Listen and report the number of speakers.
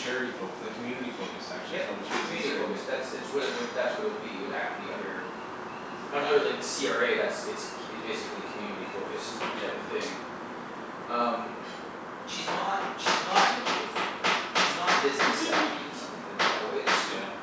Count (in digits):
3